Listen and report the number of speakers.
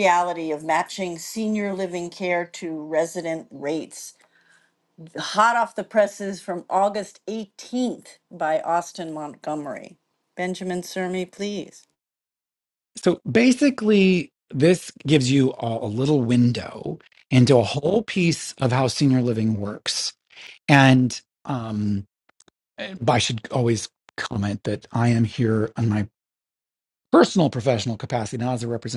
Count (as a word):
two